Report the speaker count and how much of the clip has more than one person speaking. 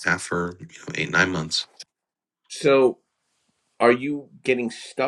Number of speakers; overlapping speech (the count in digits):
2, no overlap